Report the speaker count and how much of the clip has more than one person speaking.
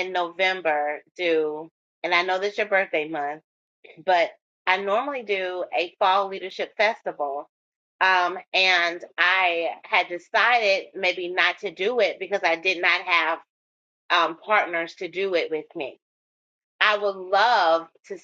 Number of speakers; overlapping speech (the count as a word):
one, no overlap